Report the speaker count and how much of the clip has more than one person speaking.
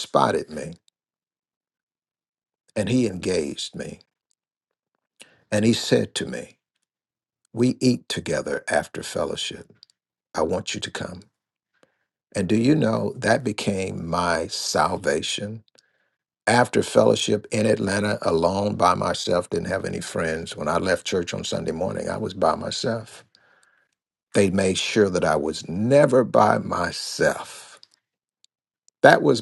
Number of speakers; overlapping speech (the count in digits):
1, no overlap